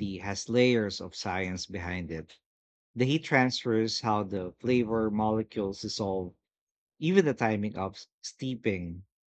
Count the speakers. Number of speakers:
1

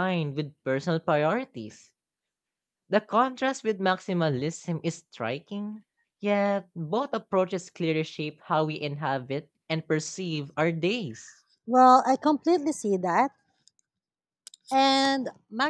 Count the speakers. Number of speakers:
2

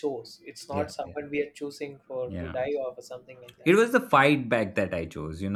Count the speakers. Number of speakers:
2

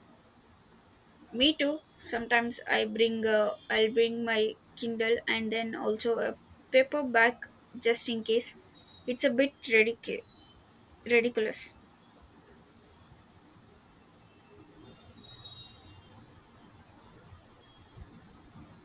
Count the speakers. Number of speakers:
1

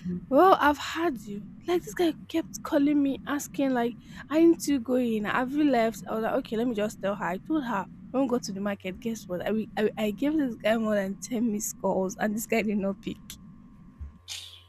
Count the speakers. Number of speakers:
1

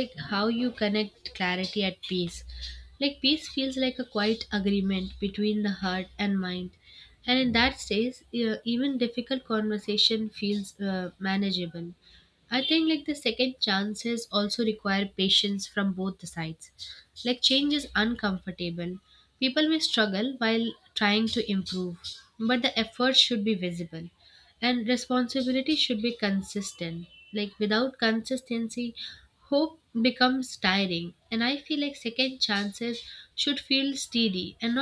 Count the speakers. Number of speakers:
1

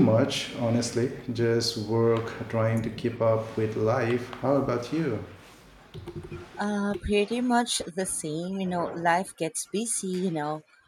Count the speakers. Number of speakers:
2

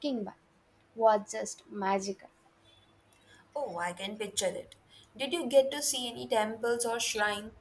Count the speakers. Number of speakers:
2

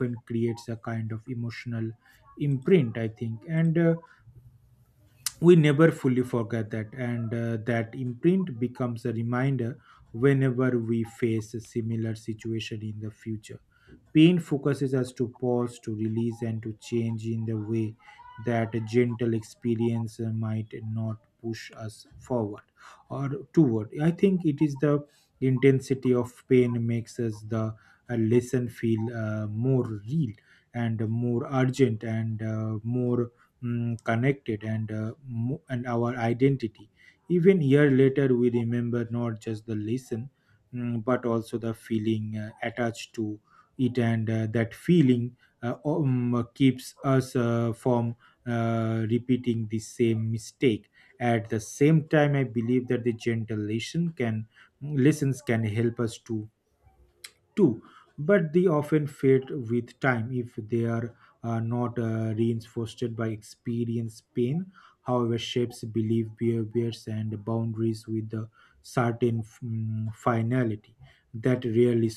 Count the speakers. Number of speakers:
1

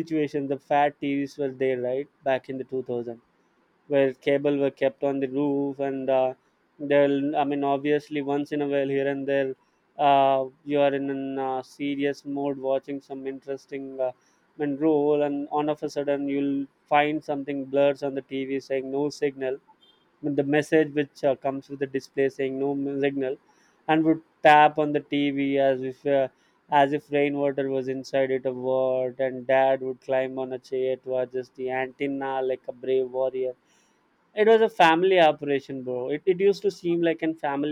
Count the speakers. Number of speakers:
1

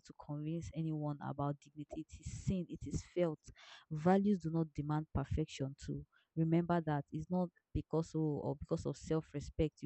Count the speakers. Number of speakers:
1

